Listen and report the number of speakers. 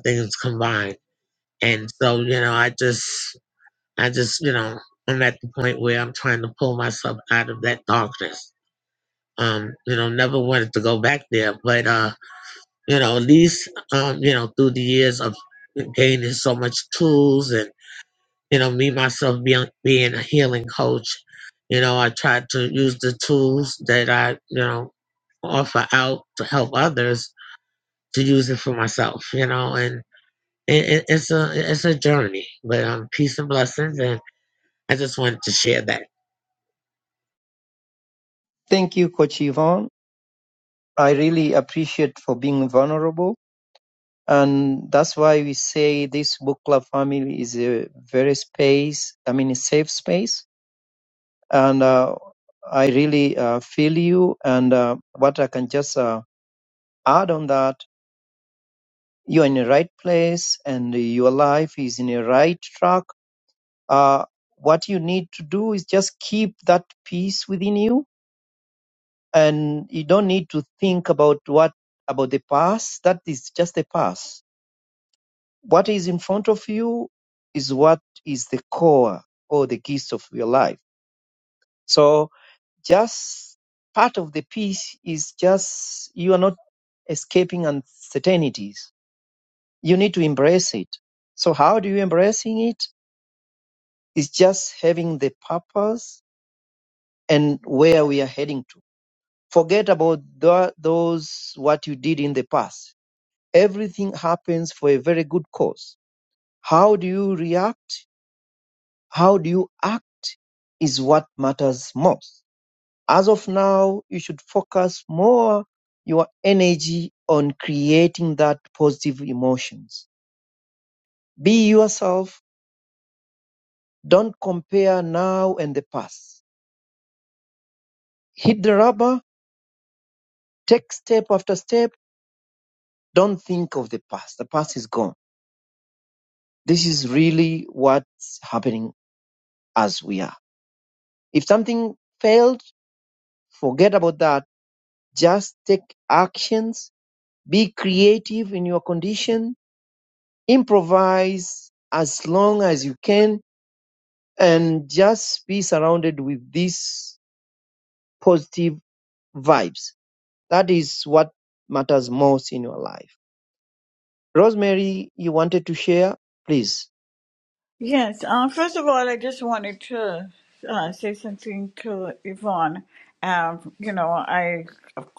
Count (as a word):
three